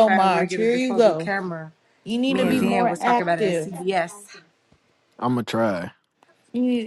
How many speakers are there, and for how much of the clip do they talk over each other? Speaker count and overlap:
three, about 39%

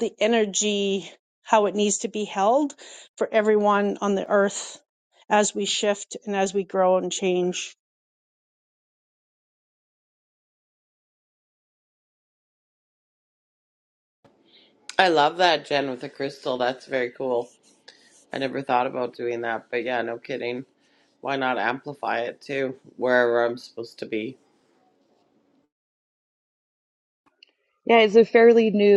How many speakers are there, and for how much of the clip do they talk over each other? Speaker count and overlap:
three, no overlap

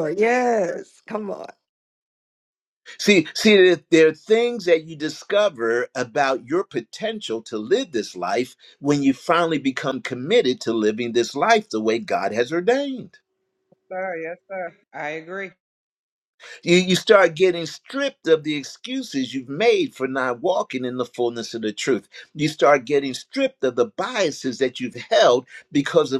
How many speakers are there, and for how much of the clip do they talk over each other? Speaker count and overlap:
three, no overlap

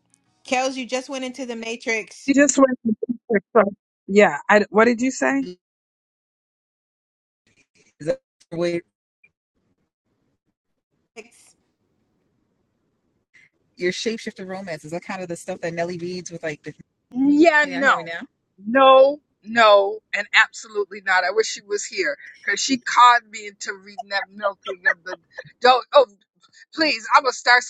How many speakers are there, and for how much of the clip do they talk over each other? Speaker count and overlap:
three, about 1%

